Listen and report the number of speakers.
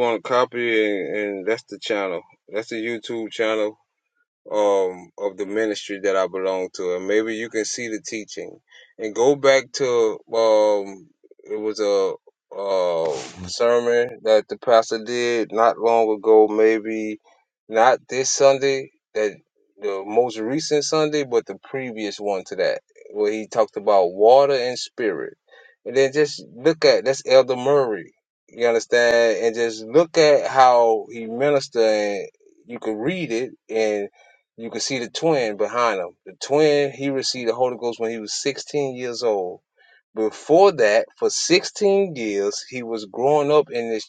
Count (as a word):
one